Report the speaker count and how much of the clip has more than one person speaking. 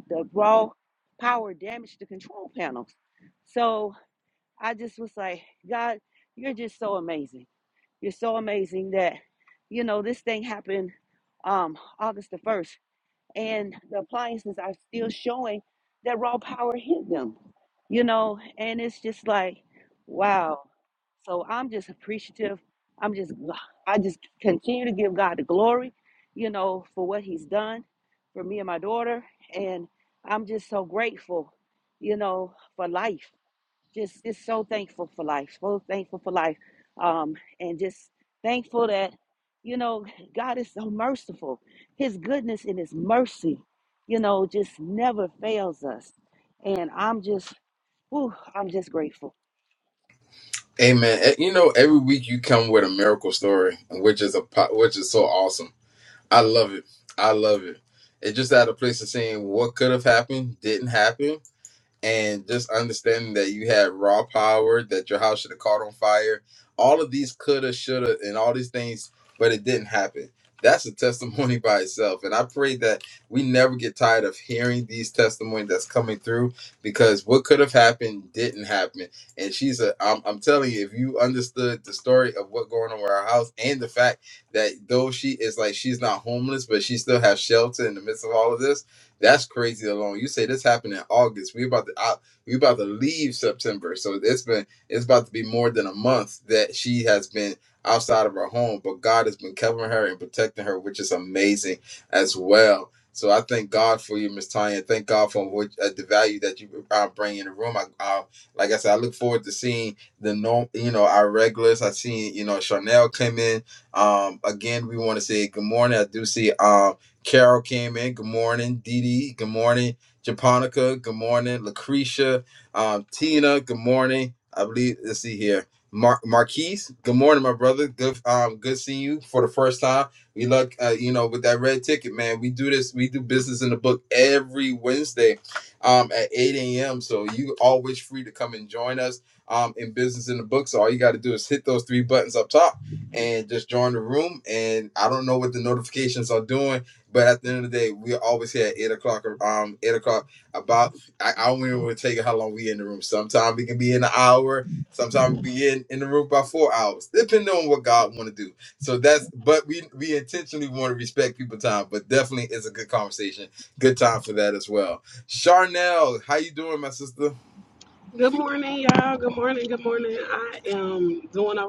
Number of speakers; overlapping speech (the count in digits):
3, no overlap